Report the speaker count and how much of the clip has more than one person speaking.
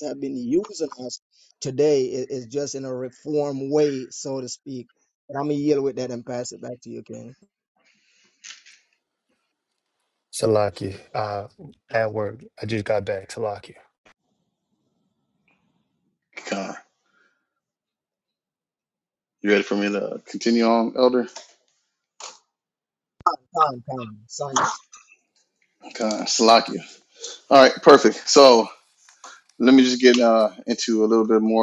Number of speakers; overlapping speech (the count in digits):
3, no overlap